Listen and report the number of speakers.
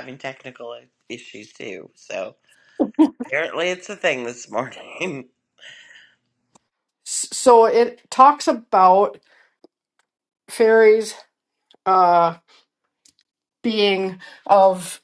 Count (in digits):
2